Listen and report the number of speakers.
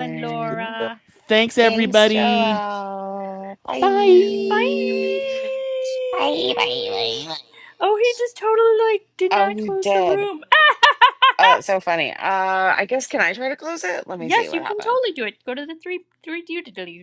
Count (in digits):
3